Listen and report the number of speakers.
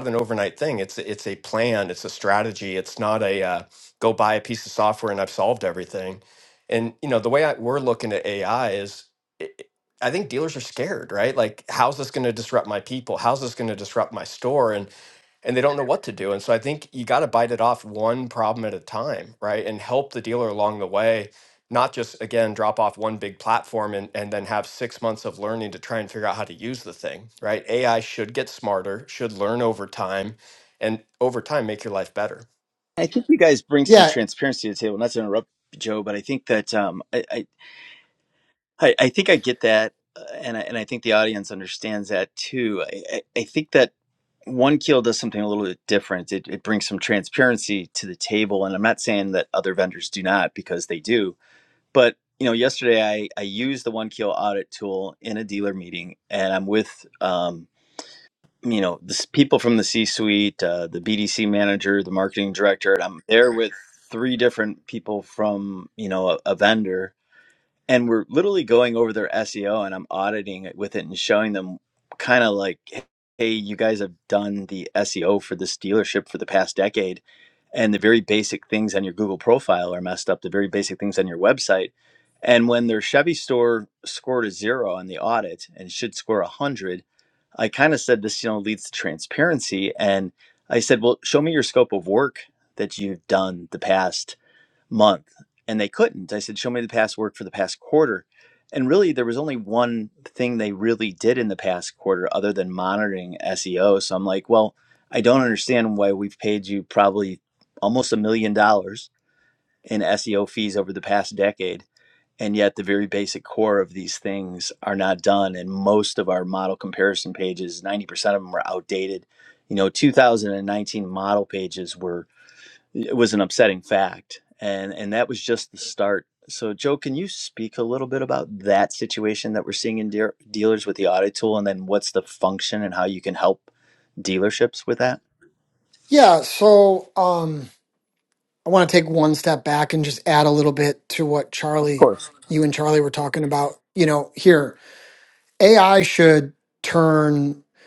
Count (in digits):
3